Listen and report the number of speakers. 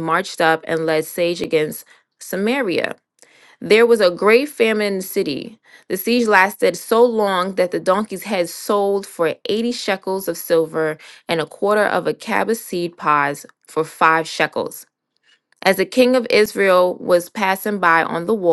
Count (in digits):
1